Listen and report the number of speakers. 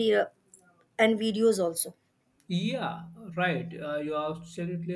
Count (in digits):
2